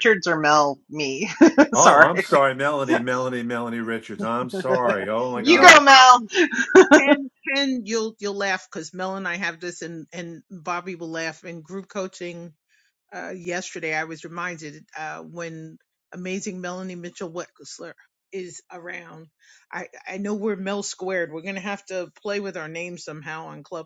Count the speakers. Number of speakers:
3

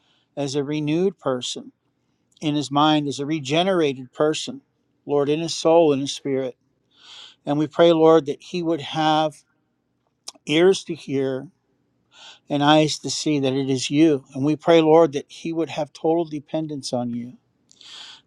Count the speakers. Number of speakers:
1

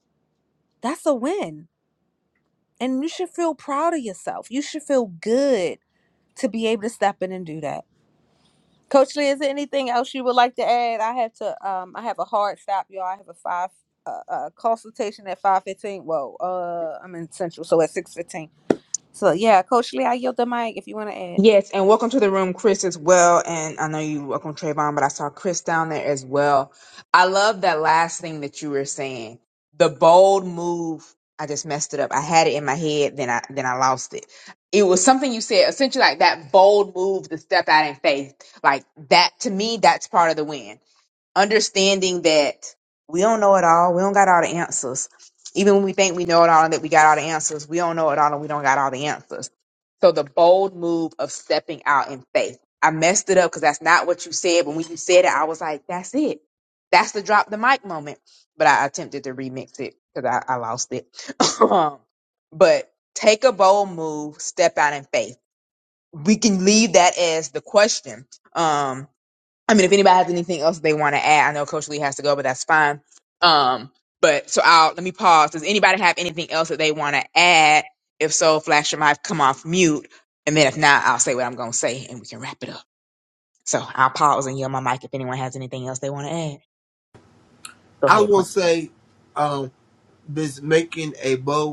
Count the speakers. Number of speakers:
3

